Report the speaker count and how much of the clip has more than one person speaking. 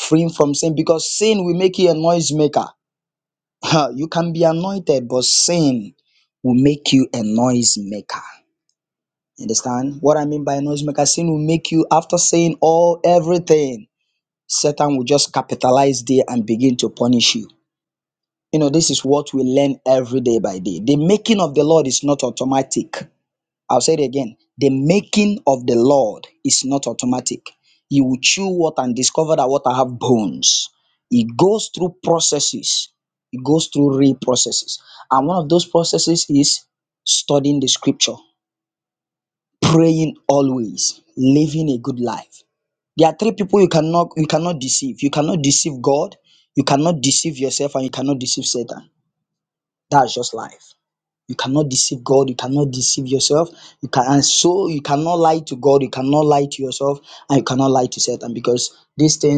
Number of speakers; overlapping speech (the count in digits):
1, no overlap